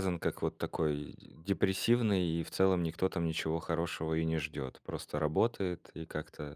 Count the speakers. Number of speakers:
1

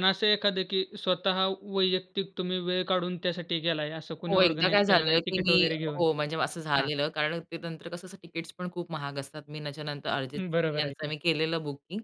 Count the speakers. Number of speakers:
2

